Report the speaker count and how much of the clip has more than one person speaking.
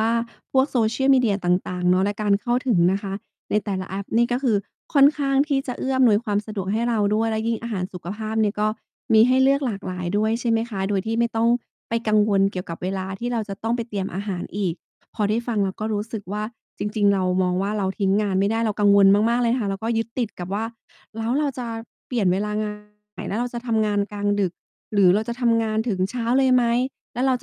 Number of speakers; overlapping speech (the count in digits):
1, no overlap